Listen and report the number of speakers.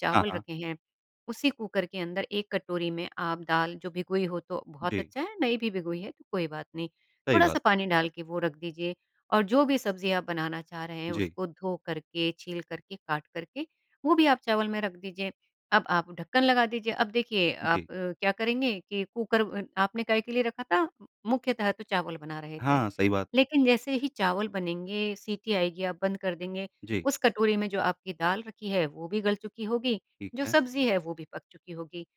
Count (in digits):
2